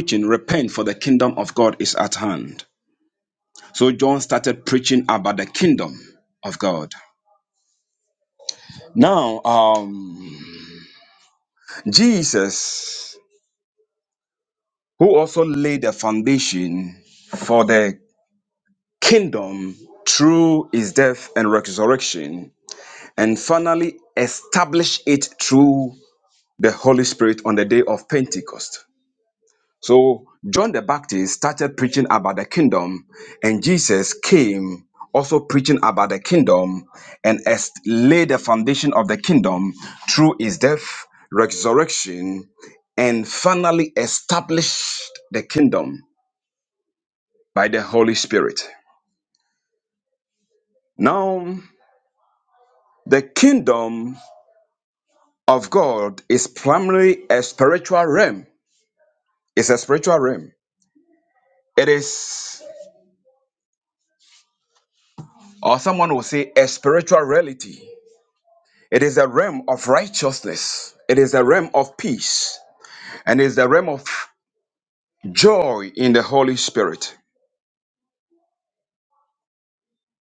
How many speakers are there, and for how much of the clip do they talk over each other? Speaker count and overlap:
1, no overlap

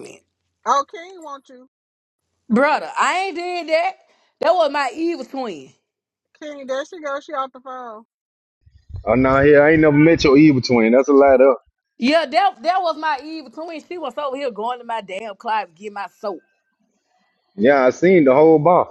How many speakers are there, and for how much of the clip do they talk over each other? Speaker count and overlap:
3, about 2%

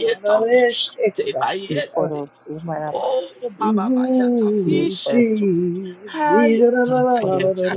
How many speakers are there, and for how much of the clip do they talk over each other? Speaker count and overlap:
3, about 71%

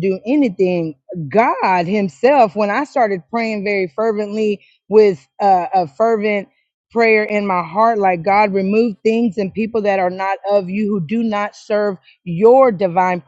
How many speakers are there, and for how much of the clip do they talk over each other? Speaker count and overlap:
1, no overlap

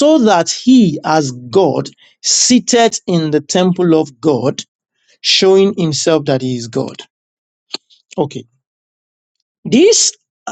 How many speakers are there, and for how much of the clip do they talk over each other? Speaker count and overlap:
1, no overlap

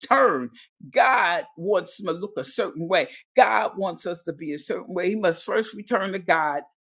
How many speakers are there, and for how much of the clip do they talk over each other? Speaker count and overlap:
1, no overlap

